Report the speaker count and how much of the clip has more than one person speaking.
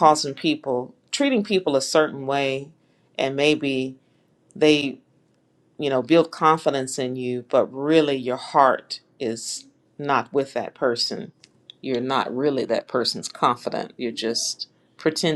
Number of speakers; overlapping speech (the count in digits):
1, no overlap